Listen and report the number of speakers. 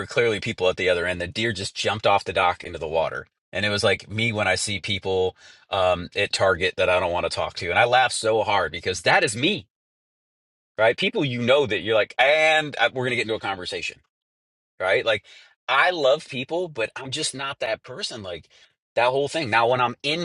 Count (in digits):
1